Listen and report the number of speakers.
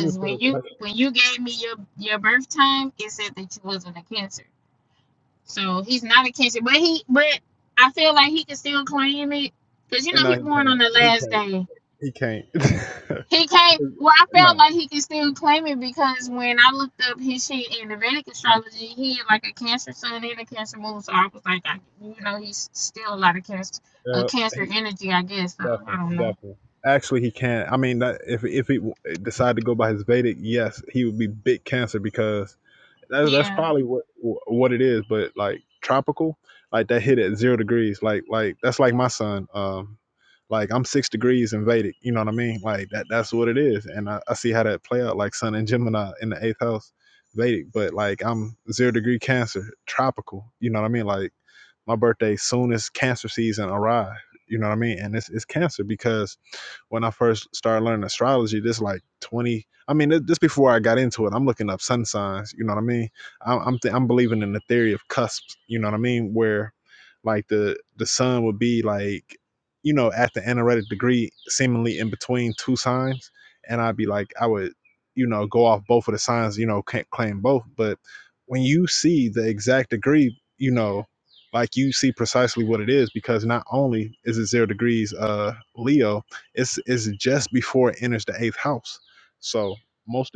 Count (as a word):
two